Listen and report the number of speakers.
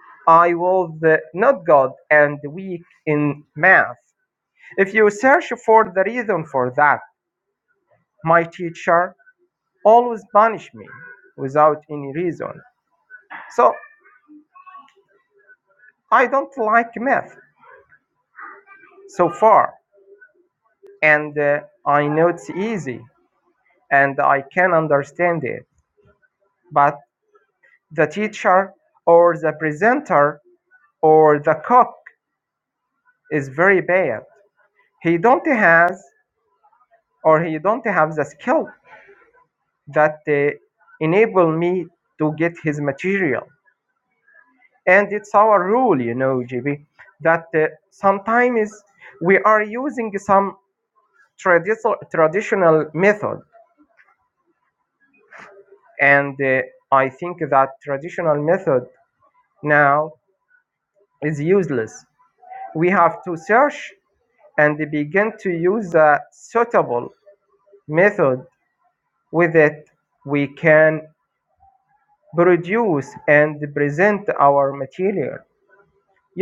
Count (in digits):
1